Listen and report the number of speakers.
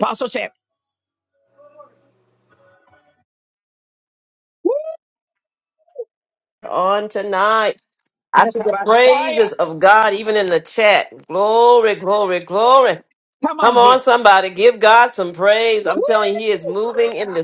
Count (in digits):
2